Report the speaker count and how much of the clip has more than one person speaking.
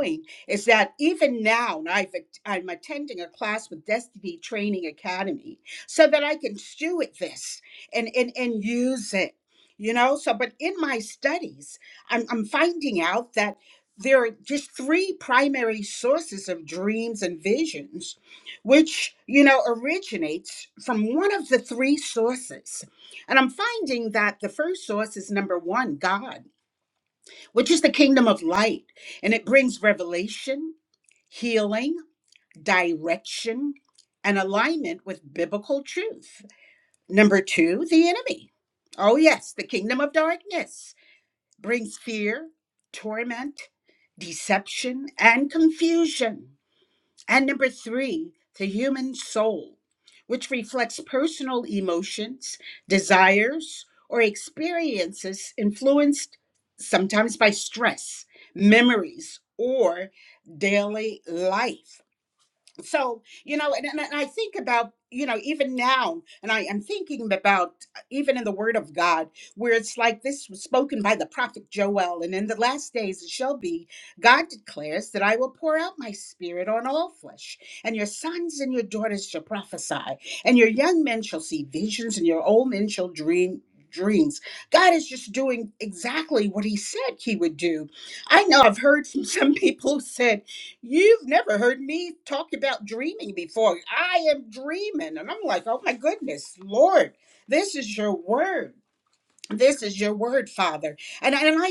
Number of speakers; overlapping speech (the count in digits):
1, no overlap